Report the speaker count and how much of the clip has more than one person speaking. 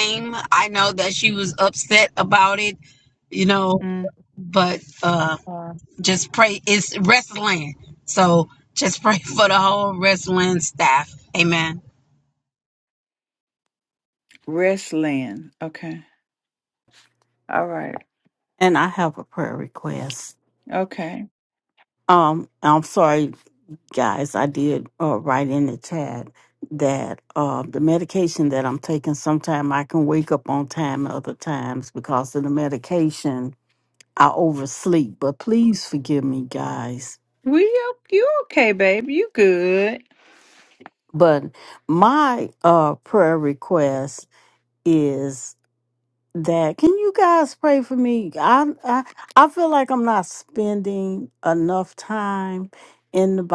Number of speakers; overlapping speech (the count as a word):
three, no overlap